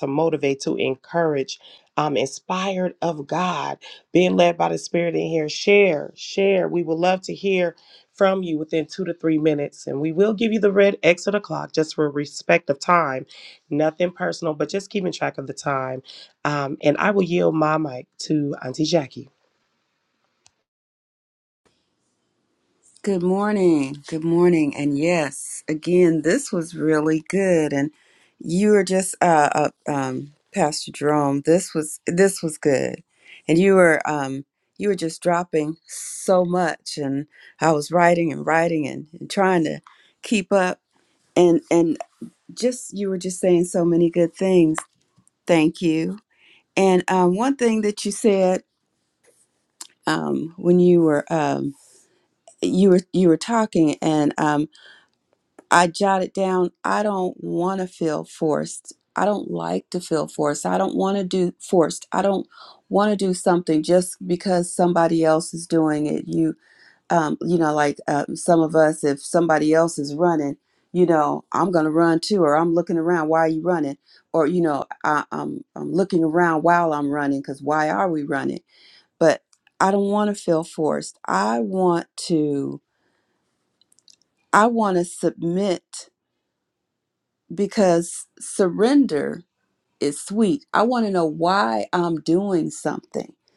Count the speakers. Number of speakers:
2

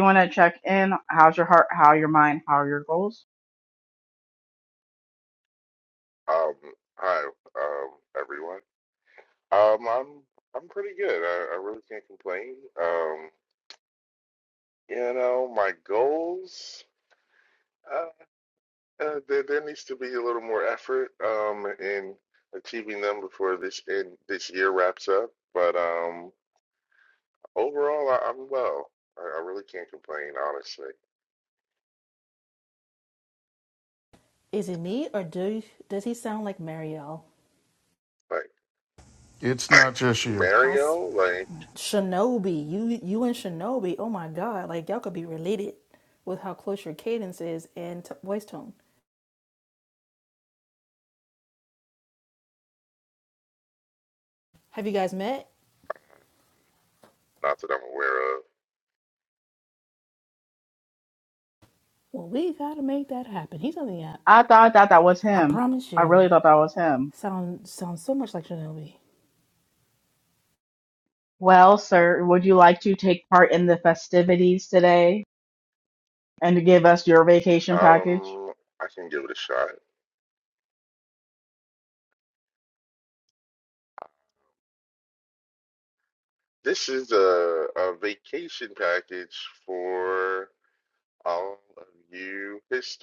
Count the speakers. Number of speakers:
4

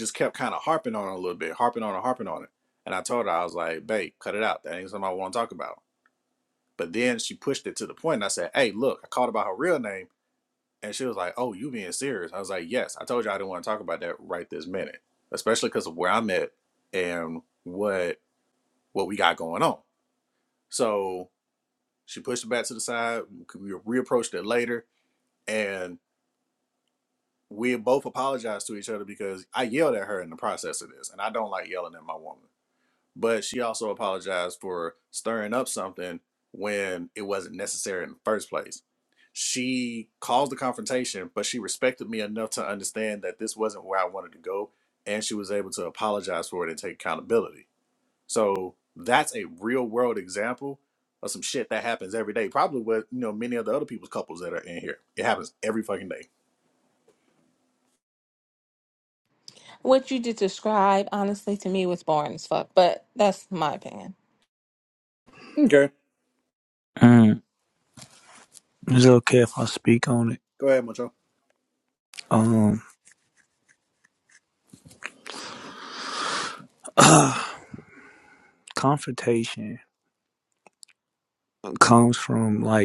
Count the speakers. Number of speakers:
3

